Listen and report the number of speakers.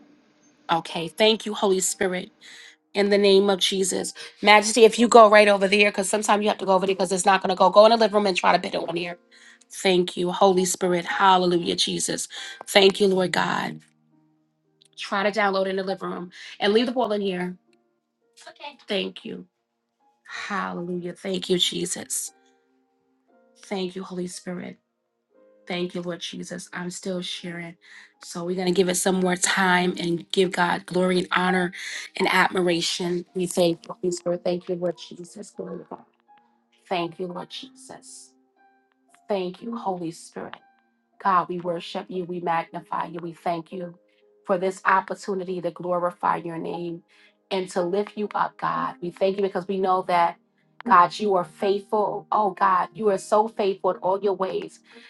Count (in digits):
1